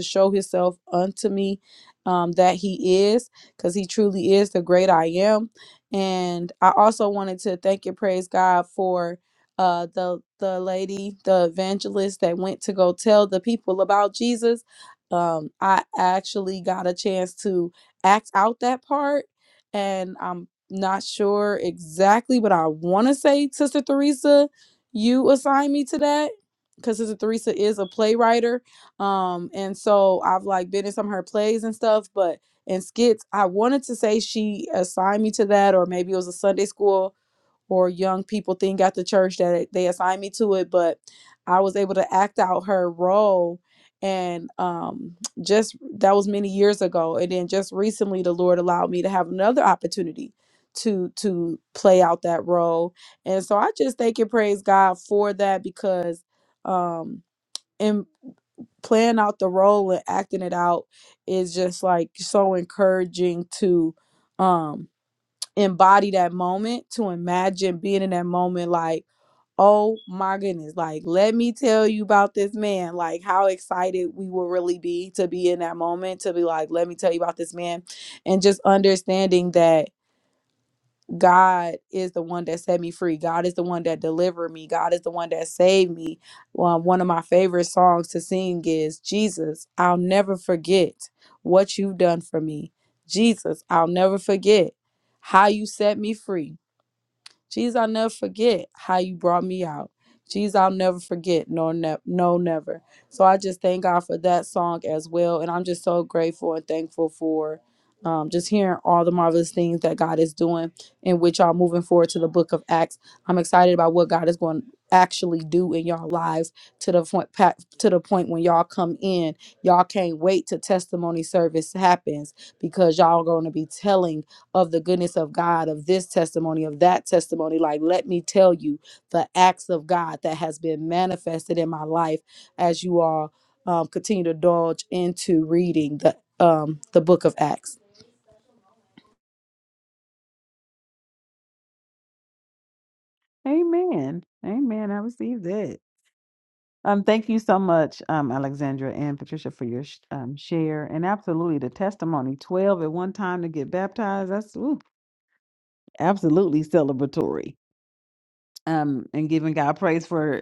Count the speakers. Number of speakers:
two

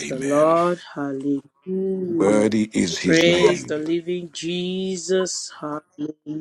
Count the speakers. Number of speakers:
two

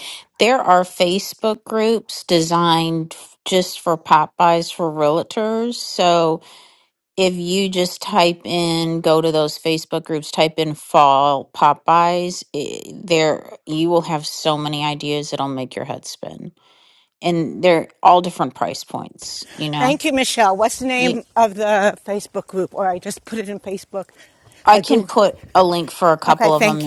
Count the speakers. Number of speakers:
two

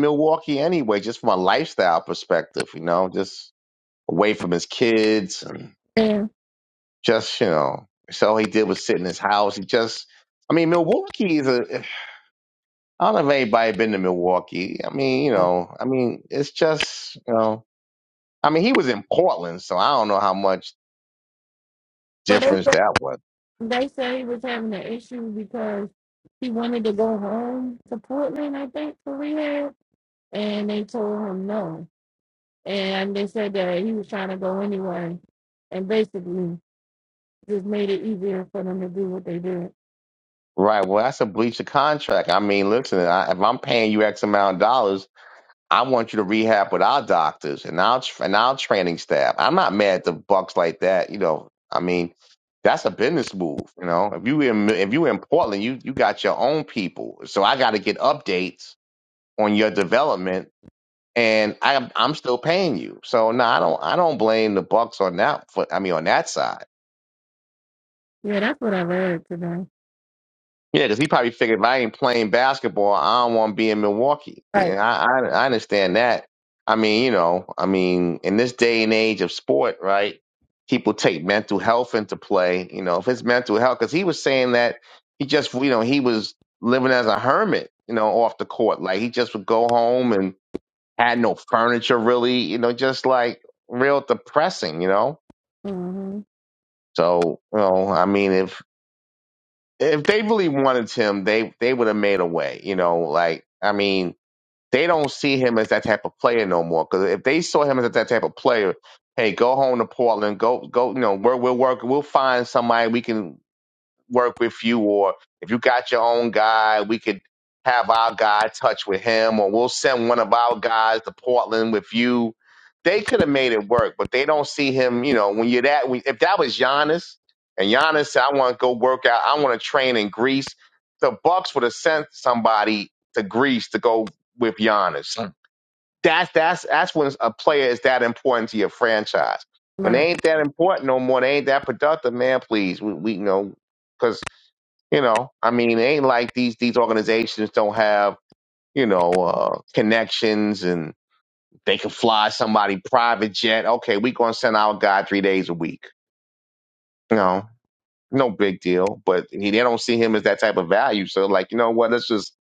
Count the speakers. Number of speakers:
two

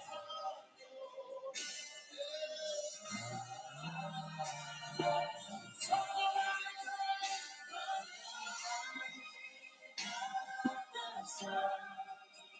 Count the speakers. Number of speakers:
zero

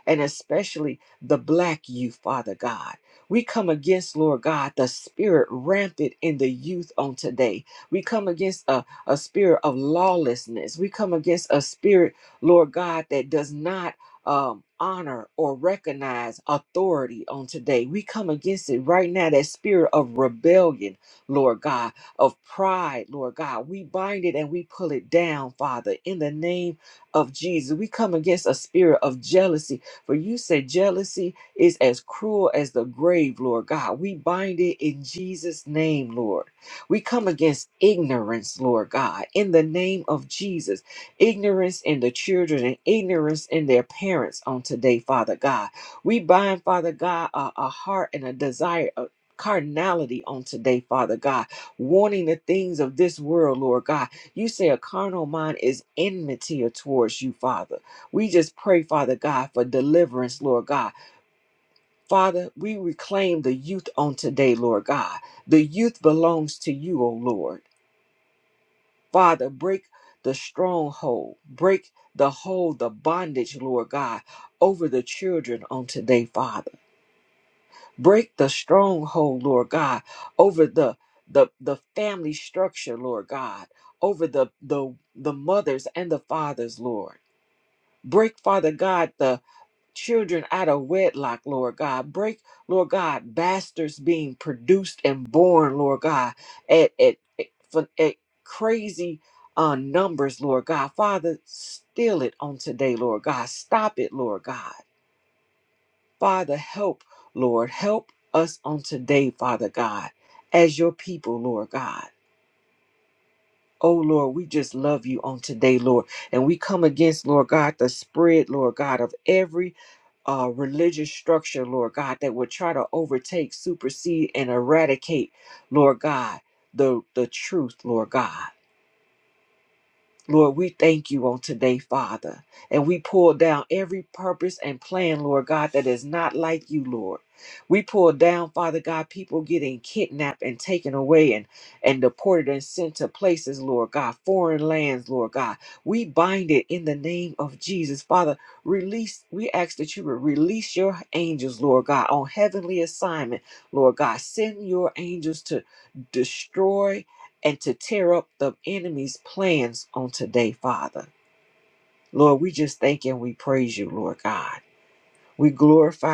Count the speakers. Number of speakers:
one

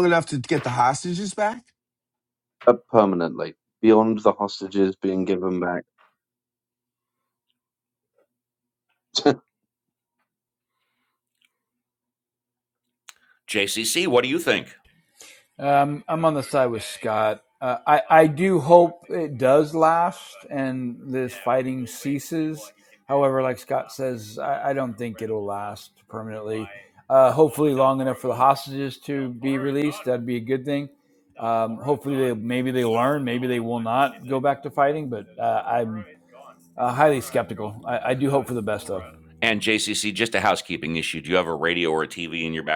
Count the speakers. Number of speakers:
four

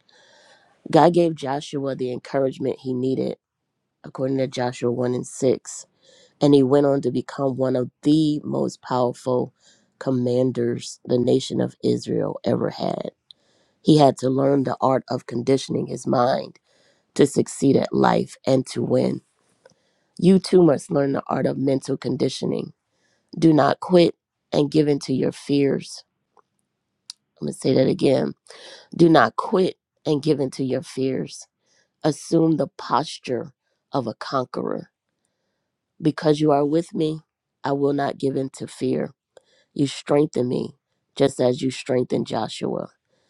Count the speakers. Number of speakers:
one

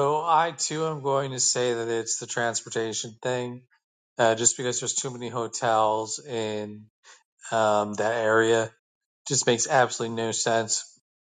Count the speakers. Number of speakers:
one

